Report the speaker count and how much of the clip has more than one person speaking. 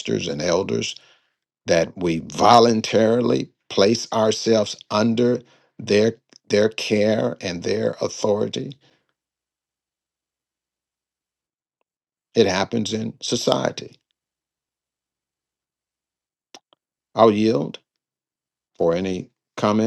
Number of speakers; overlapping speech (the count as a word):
one, no overlap